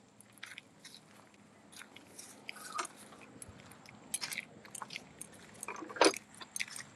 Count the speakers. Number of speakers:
0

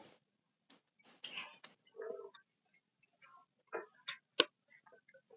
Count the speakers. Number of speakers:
0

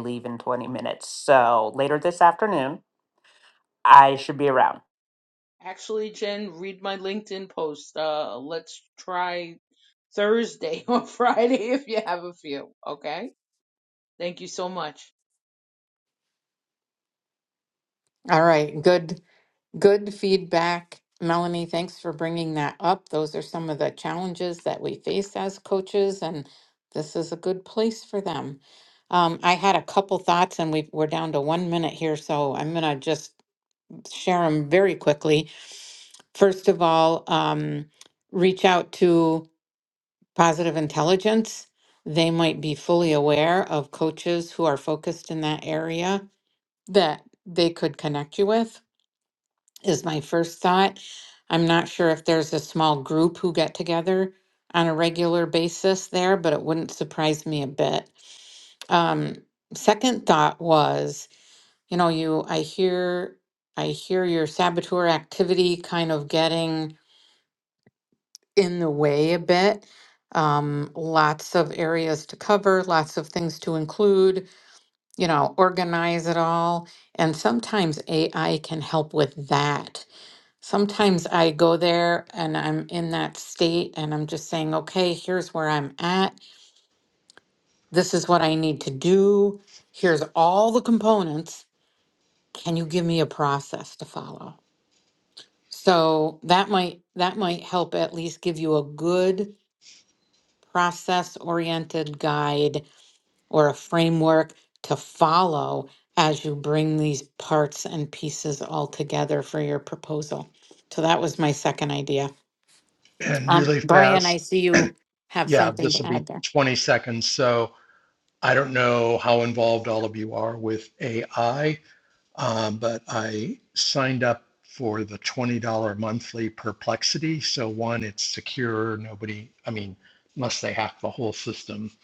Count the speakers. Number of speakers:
4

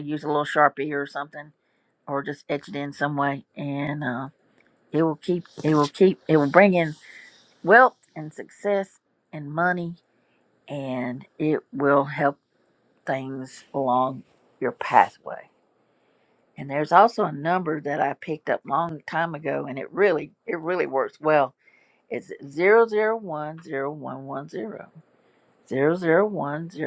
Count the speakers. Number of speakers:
1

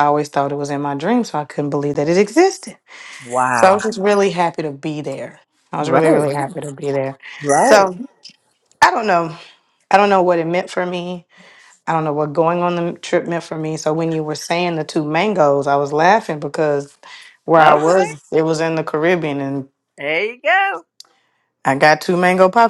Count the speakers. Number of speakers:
2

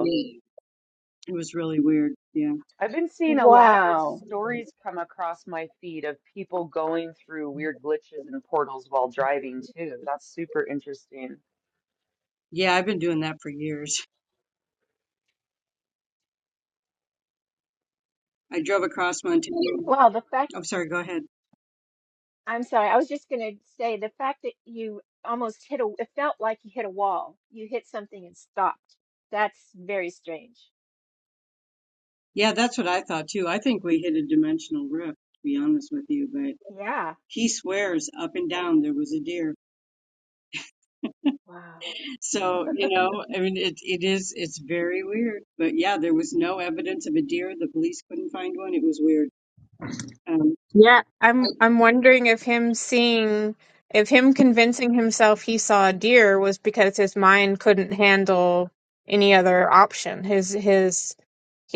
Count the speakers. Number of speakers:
4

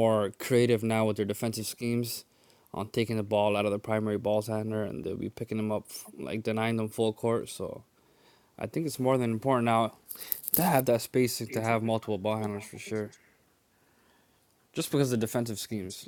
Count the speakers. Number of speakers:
1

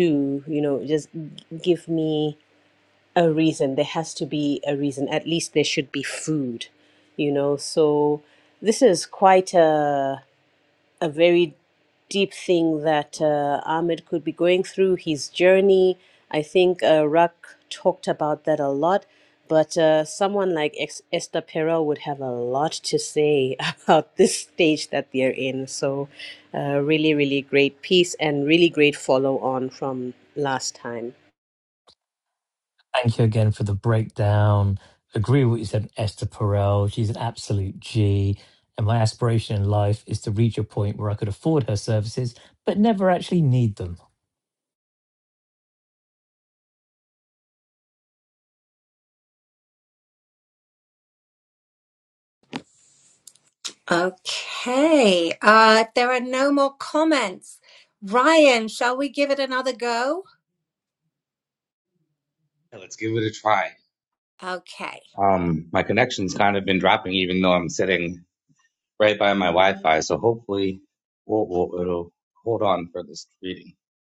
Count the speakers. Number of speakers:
4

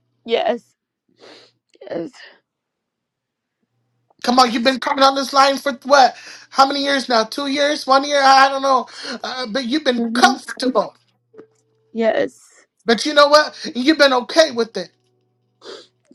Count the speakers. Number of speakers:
2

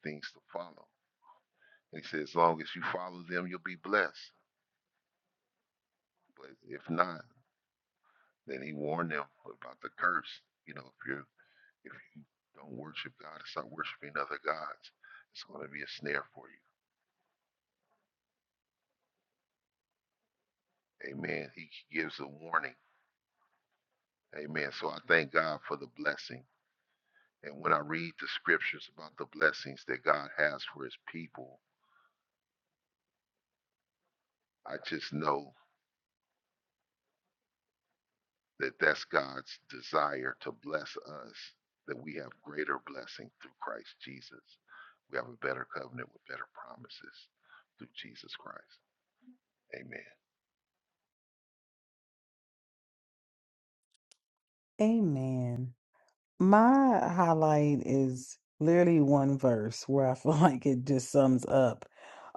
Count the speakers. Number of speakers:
2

